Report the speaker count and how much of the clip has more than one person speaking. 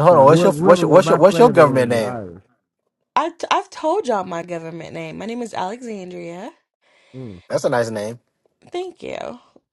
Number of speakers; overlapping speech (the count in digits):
3, about 21%